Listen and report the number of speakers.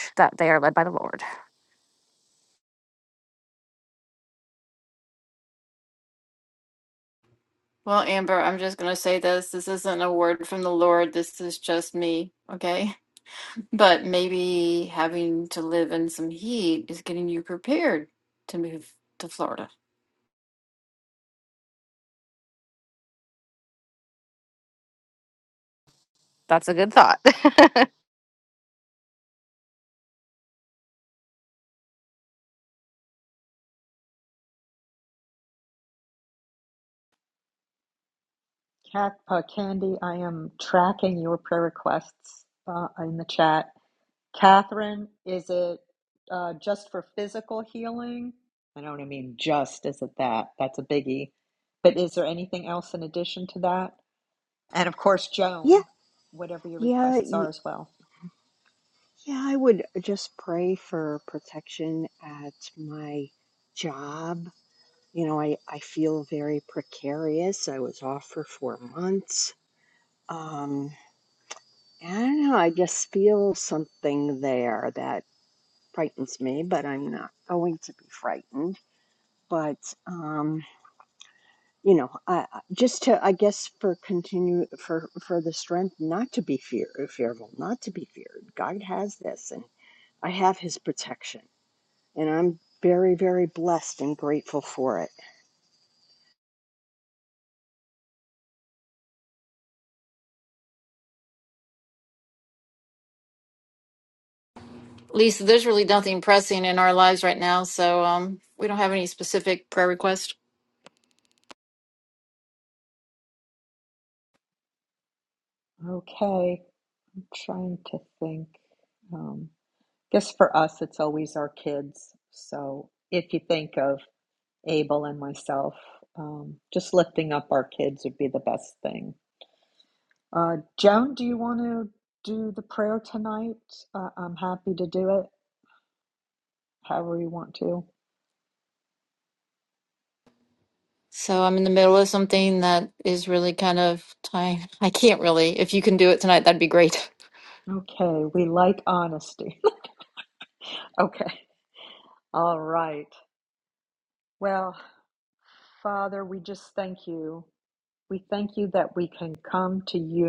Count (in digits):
4